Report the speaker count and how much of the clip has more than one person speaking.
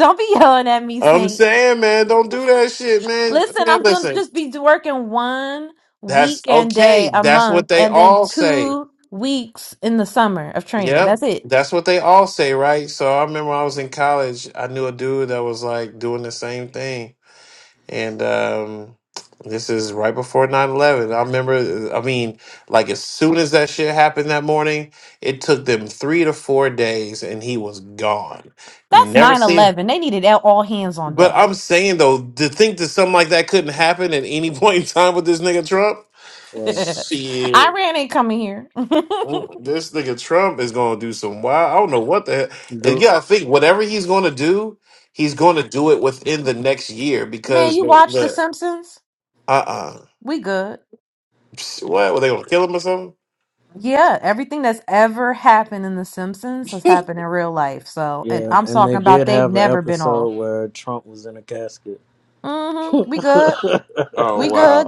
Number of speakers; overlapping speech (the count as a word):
three, about 16%